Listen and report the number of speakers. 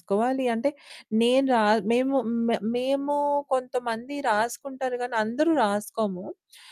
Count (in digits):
1